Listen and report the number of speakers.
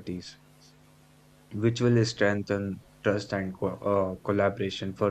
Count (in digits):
1